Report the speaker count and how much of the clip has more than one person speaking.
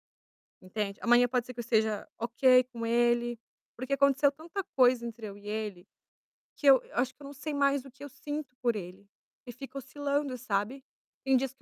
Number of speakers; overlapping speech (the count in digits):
1, no overlap